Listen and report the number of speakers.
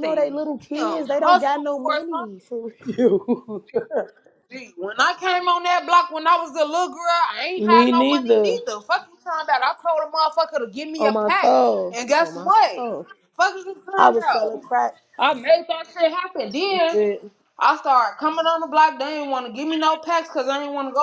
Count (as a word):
two